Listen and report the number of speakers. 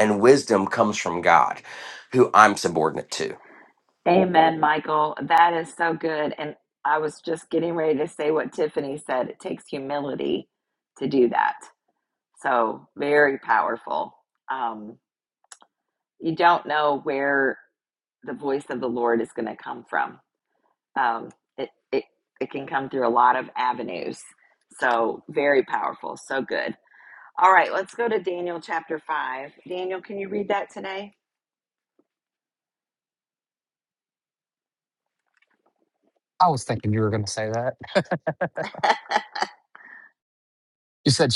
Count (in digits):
3